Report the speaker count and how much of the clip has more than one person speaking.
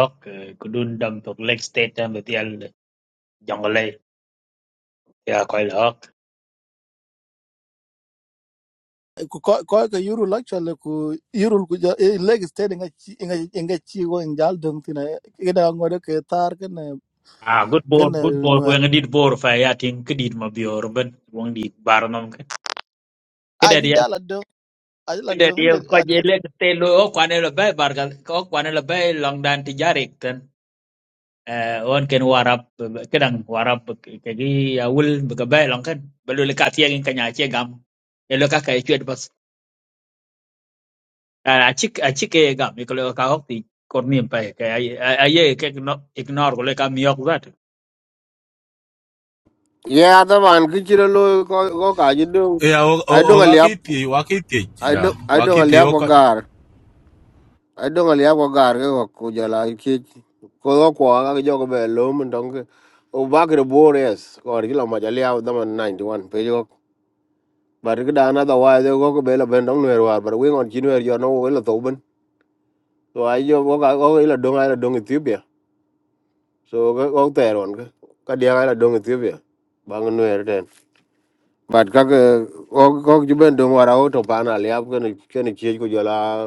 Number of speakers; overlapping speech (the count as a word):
four, about 4%